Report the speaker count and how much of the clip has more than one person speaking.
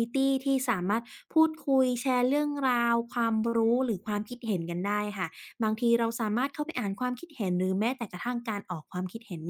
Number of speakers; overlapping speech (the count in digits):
1, no overlap